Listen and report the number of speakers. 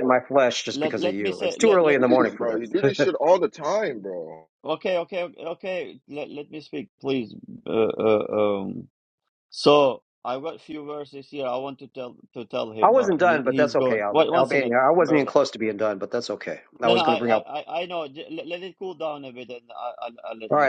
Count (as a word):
three